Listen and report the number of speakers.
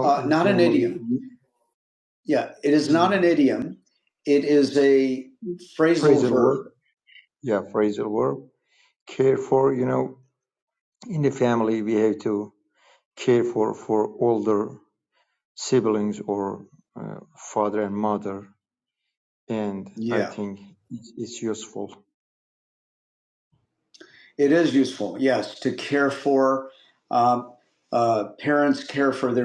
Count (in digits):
2